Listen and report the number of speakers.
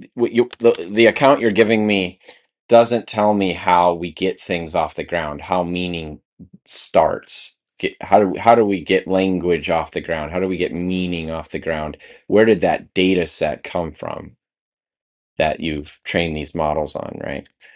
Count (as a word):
one